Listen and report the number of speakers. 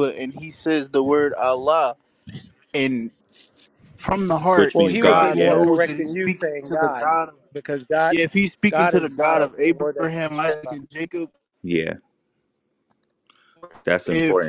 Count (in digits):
3